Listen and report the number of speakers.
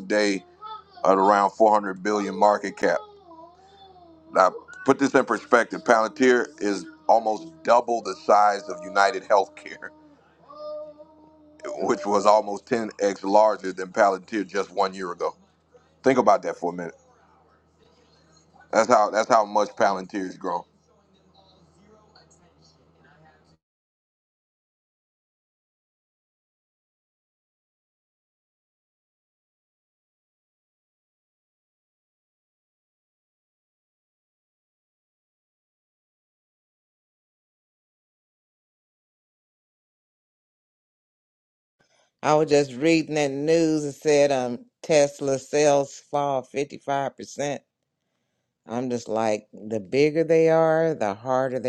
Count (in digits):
2